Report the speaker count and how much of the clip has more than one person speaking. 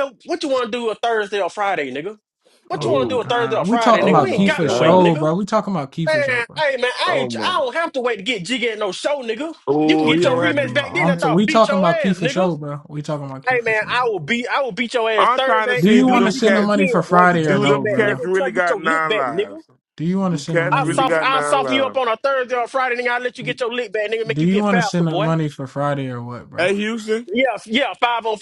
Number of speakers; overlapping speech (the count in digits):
3, about 49%